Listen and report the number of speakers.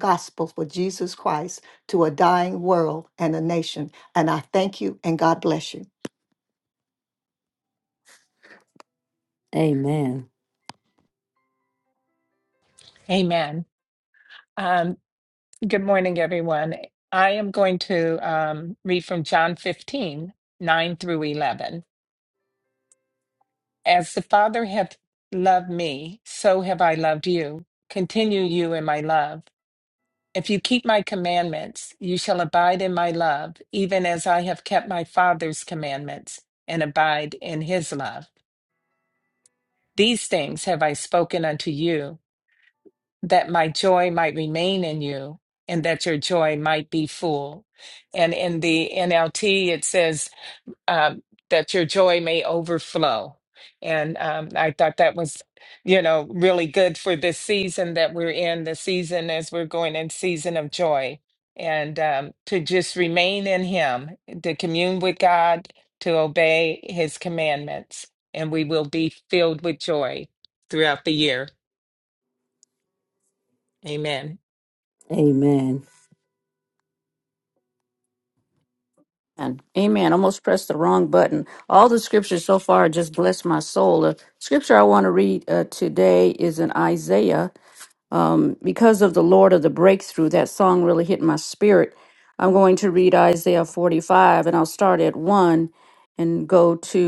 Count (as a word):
four